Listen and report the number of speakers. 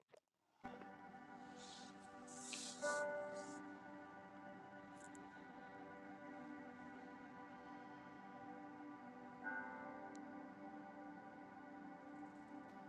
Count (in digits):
0